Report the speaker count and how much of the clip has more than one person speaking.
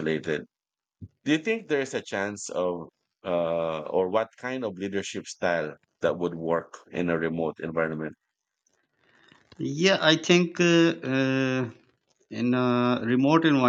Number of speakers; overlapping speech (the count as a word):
two, no overlap